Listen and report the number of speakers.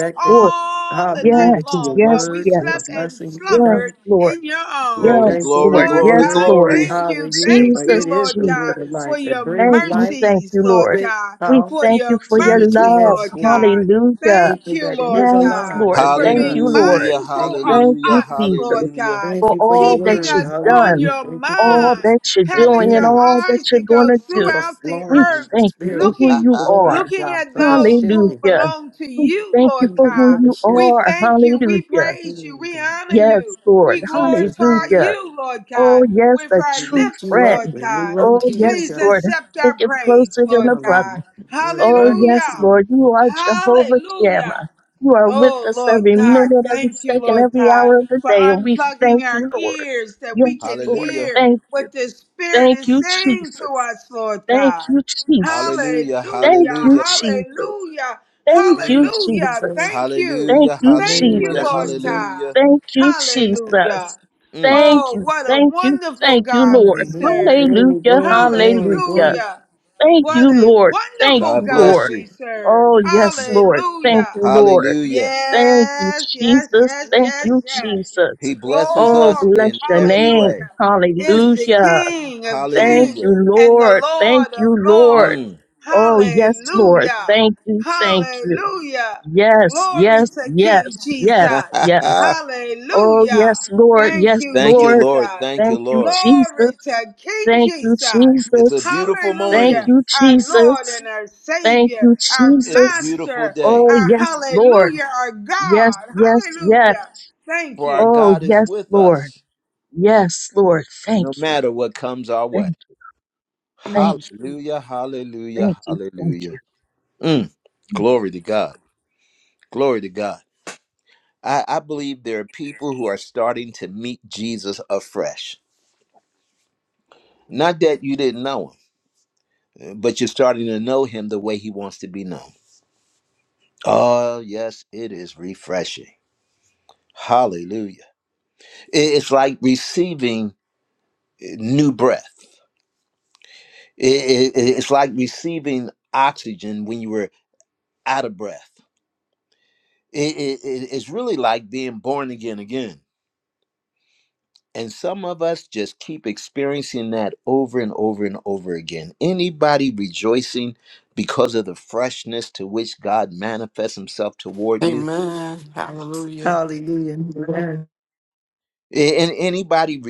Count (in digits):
5